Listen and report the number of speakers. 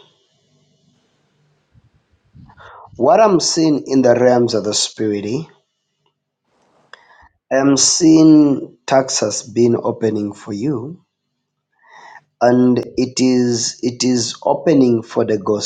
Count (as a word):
one